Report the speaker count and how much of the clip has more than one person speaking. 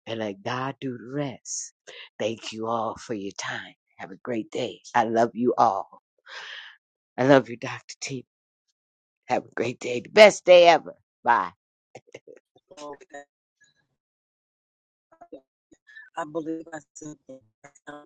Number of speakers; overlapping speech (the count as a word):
two, no overlap